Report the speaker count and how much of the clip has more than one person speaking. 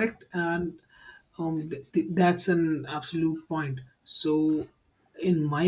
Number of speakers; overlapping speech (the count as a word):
one, no overlap